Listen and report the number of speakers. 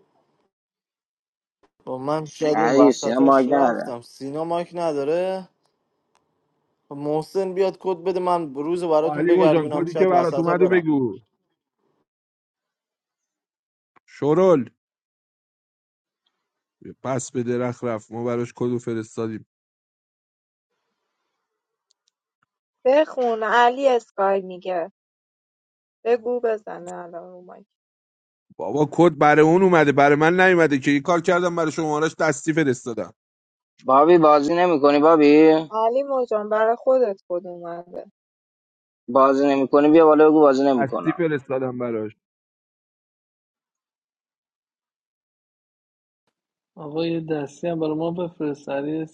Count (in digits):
5